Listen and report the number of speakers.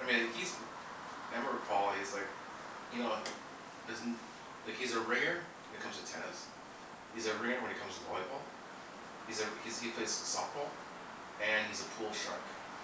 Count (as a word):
one